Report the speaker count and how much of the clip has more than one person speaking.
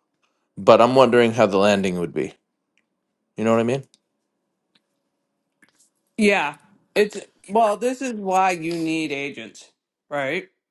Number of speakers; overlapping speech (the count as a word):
two, no overlap